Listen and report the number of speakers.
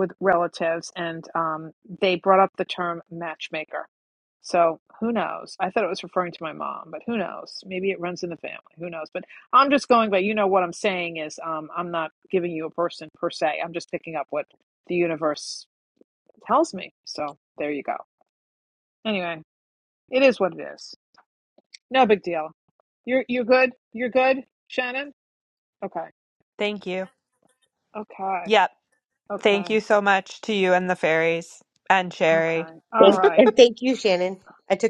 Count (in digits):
3